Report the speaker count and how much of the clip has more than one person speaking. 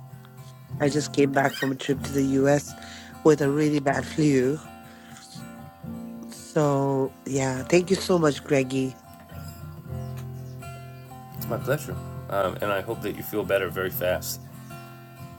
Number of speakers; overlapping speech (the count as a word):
two, about 1%